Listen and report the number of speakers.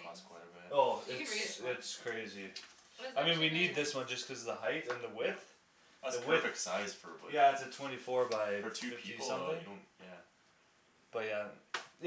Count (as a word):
three